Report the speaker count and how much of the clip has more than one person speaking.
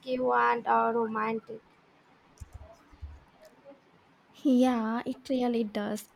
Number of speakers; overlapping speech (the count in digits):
2, no overlap